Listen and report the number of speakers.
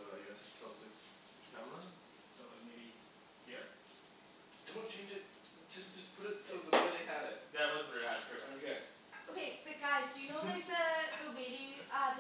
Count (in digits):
4